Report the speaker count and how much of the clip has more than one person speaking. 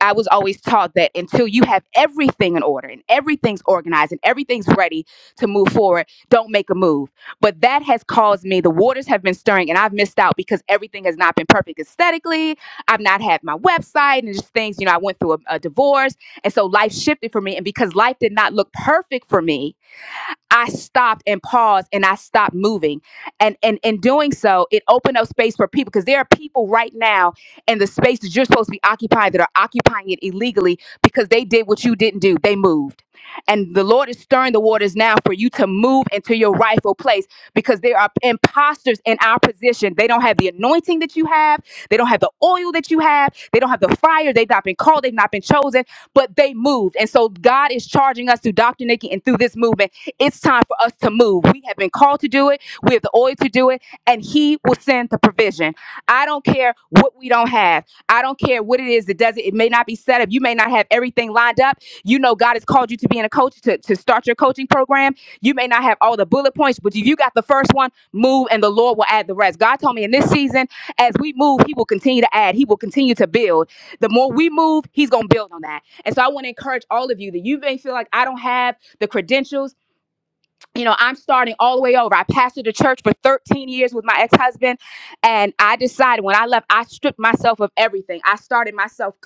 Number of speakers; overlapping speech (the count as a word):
one, no overlap